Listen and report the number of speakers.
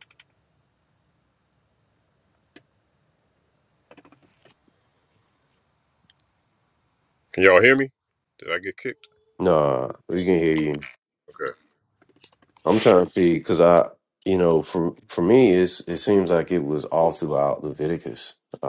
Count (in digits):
2